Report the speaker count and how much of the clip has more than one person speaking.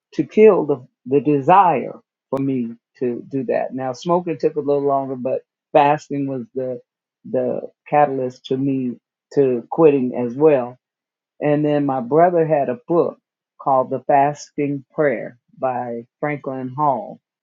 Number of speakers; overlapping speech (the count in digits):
1, no overlap